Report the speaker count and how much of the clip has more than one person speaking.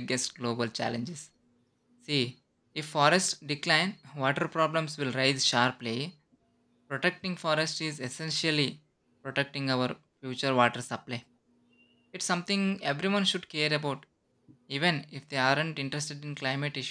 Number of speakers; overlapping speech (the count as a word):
one, no overlap